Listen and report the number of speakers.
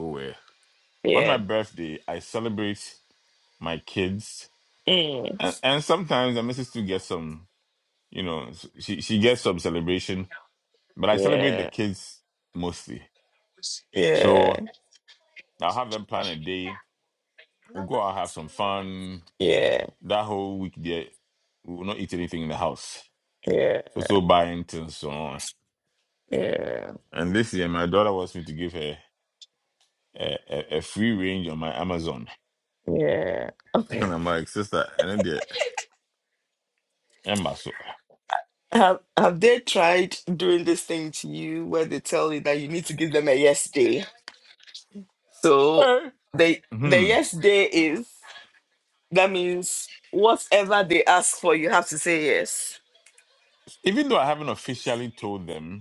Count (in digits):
2